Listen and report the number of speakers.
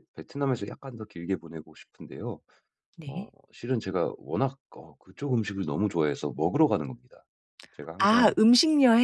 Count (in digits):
2